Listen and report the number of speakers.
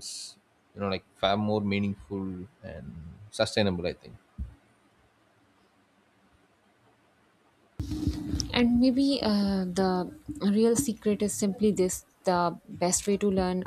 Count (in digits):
2